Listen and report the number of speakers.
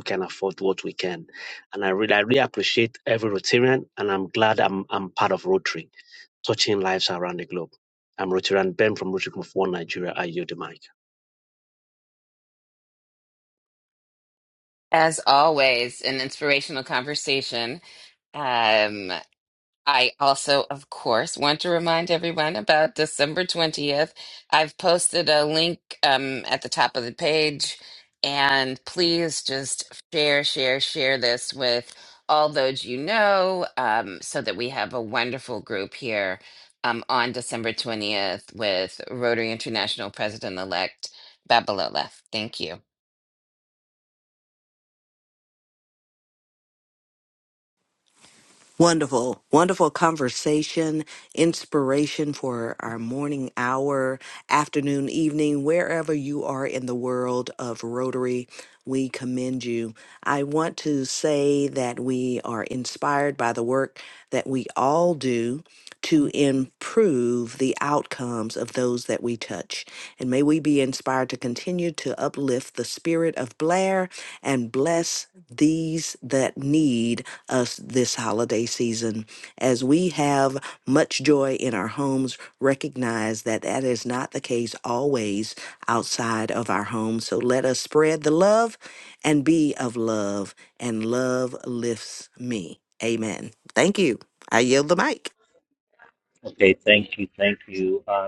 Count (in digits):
4